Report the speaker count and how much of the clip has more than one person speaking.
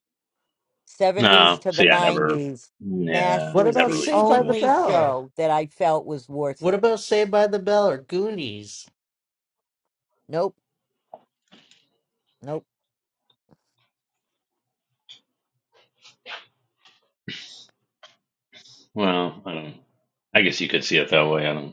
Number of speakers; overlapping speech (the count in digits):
3, about 16%